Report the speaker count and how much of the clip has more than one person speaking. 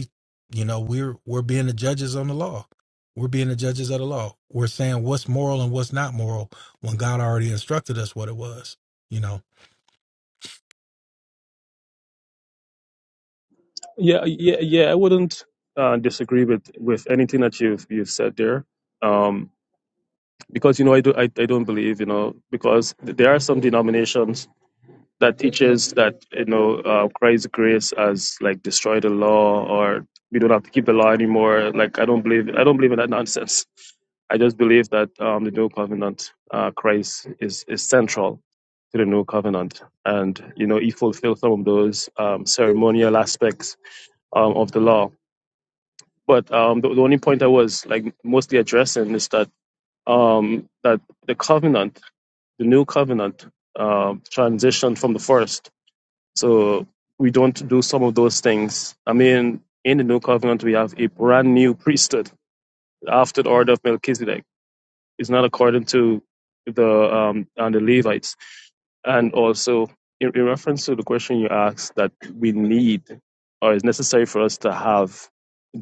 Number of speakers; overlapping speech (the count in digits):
2, no overlap